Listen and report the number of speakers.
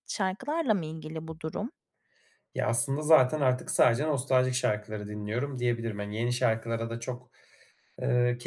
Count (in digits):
2